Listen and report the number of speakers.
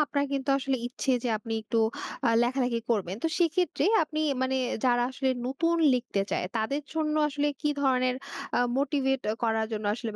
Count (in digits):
1